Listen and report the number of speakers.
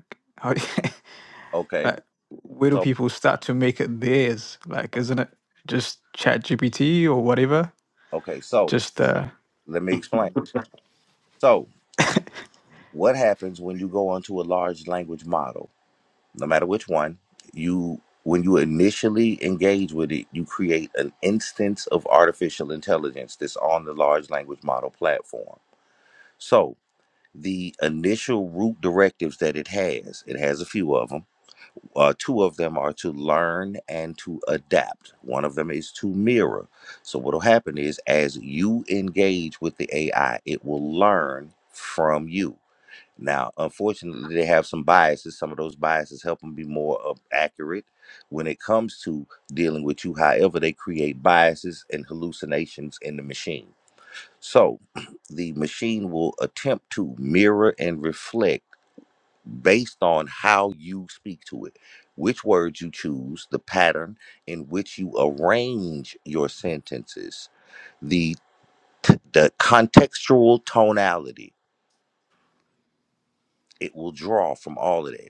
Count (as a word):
two